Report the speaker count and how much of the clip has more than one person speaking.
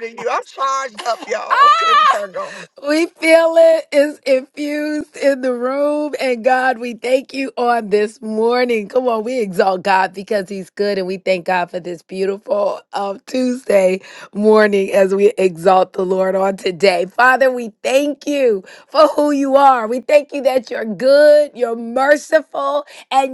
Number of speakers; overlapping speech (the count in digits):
2, no overlap